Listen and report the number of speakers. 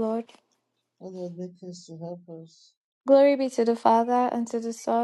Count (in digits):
2